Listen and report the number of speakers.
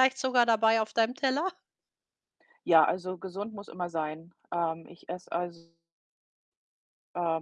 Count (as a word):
two